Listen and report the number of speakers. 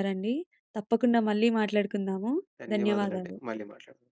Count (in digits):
2